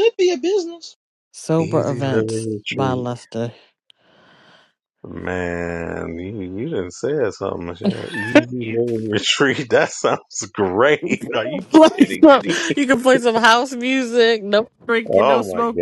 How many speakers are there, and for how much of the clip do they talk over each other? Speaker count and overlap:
3, about 19%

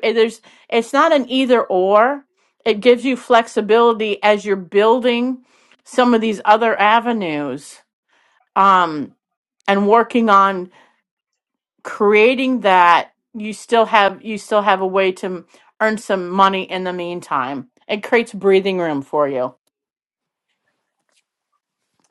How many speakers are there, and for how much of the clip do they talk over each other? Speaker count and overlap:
1, no overlap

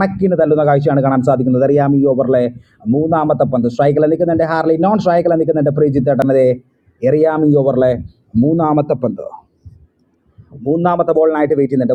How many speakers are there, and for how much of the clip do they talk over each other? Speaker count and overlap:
1, no overlap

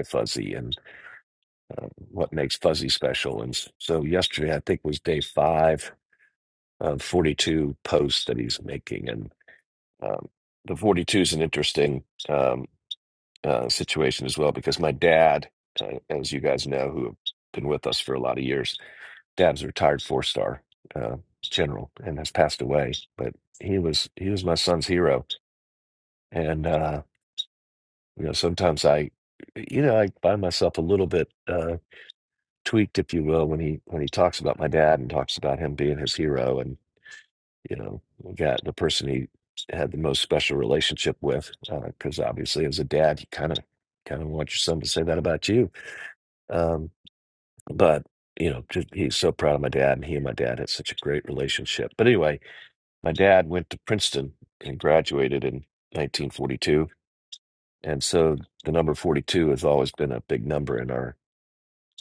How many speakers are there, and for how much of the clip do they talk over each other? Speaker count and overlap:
1, no overlap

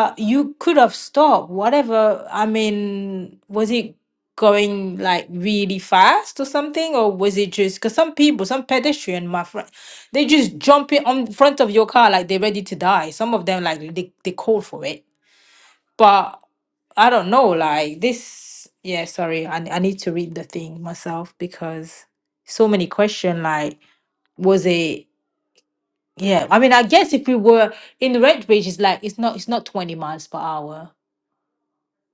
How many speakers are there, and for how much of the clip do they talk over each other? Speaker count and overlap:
1, no overlap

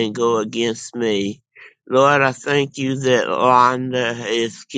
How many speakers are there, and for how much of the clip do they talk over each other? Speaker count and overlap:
1, no overlap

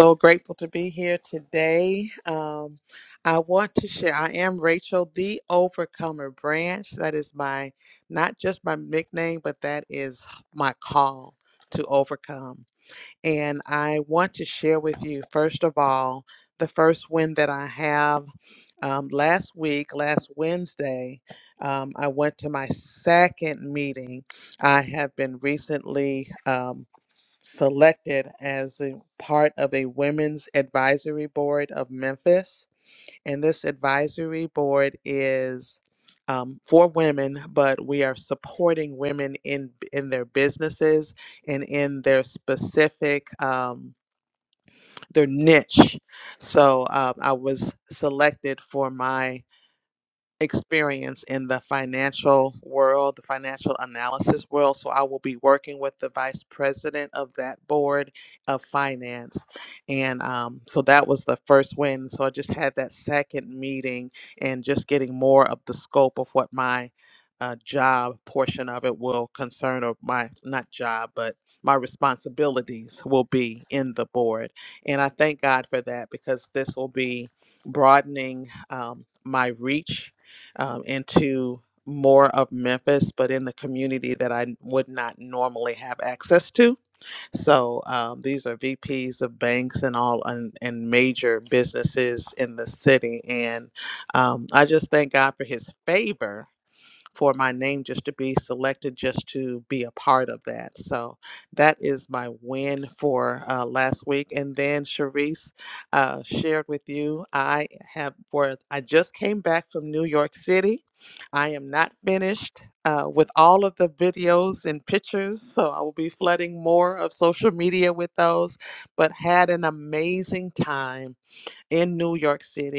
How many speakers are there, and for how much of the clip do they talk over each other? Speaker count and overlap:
1, no overlap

